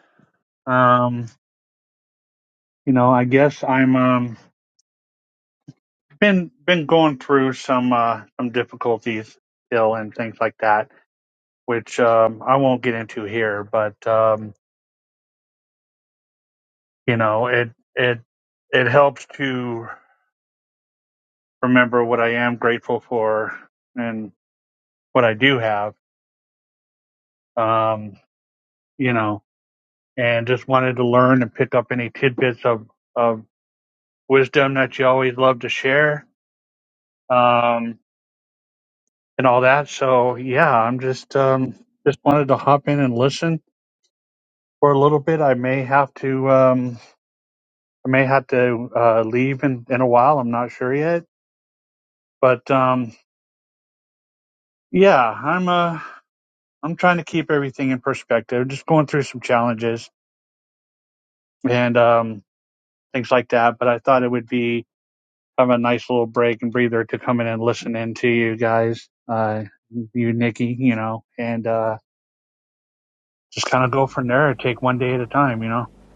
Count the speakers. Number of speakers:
1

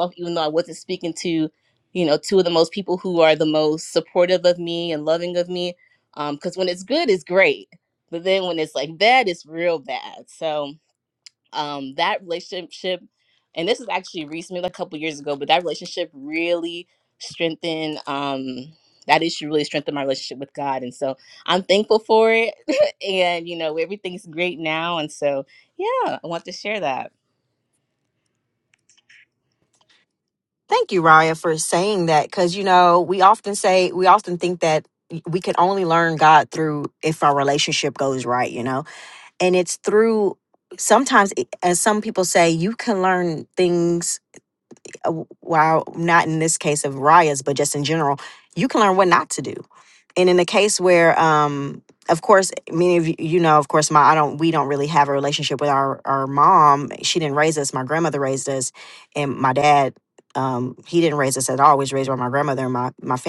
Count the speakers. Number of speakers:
2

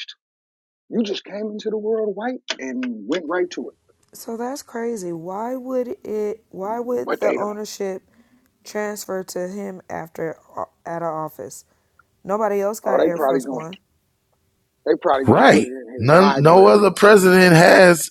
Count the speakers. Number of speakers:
3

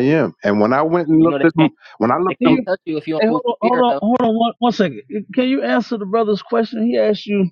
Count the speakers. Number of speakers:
3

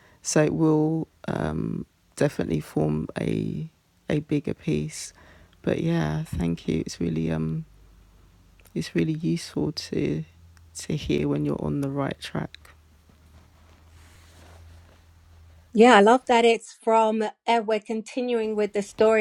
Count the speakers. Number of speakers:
2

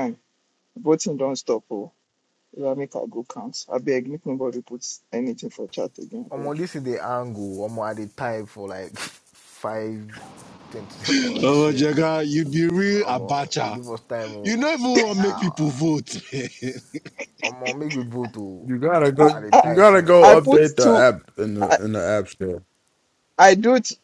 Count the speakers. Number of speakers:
4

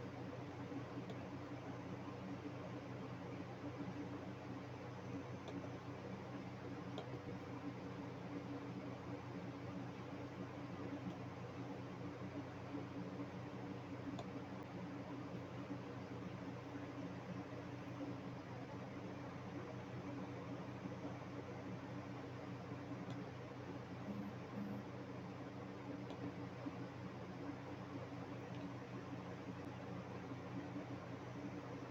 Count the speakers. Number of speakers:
0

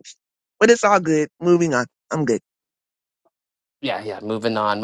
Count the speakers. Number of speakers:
2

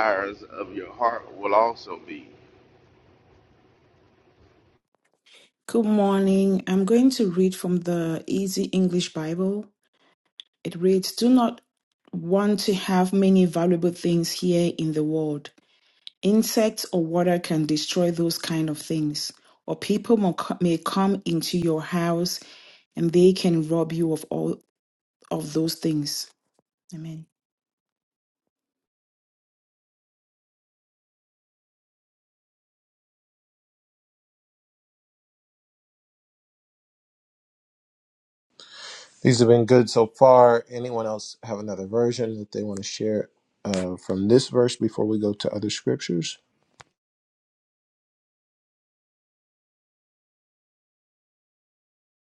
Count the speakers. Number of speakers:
3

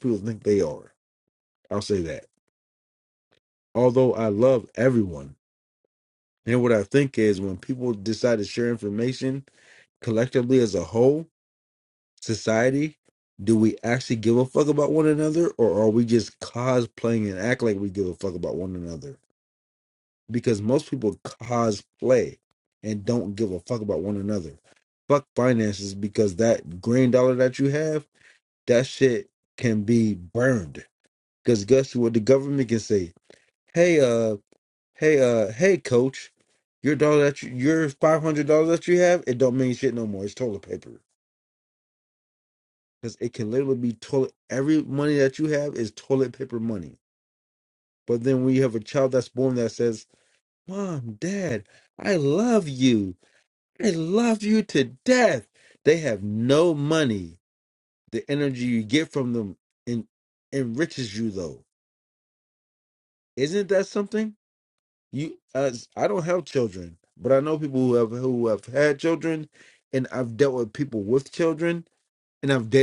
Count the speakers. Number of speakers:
1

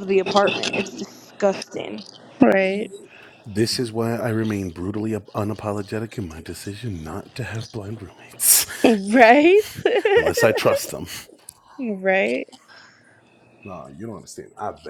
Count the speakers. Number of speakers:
3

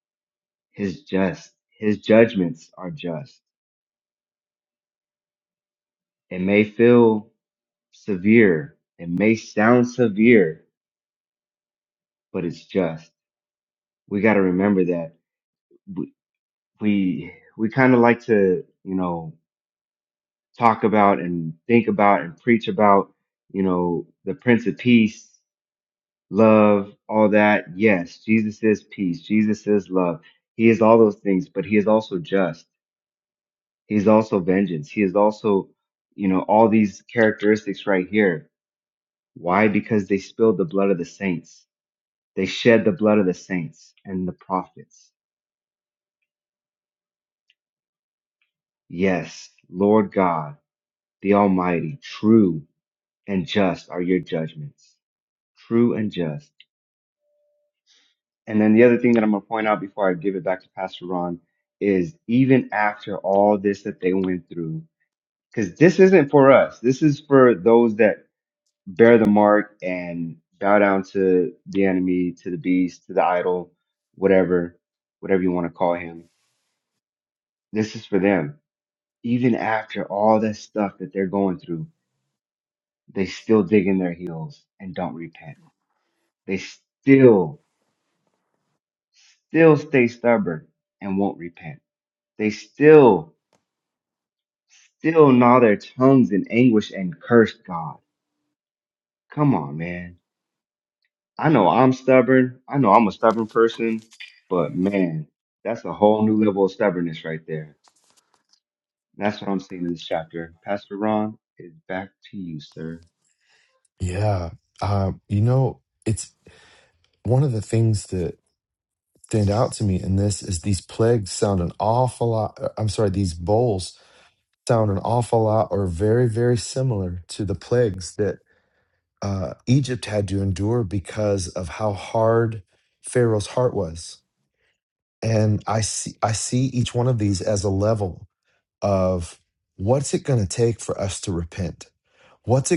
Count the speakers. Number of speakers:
2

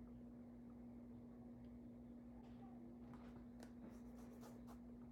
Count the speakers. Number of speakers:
0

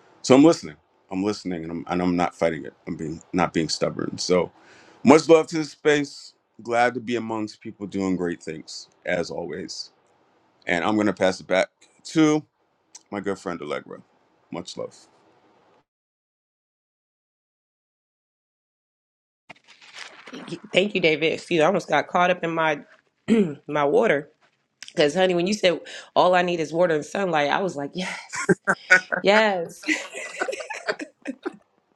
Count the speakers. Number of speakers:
2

